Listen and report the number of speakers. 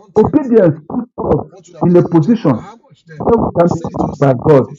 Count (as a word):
two